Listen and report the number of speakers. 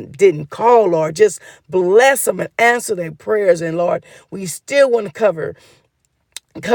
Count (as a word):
one